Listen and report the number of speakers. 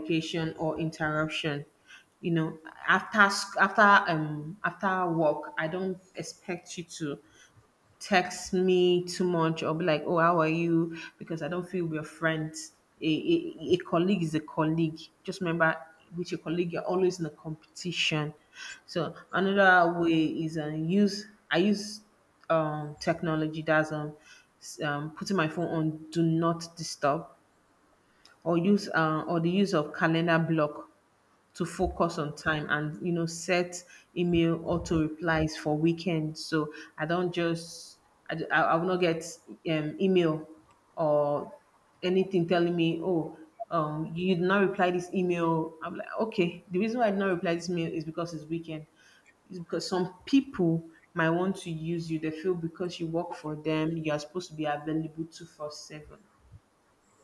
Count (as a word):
one